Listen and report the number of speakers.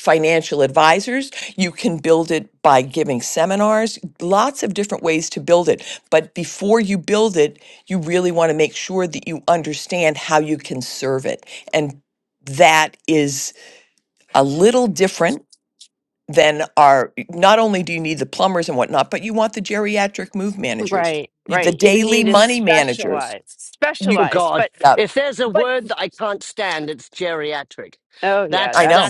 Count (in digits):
3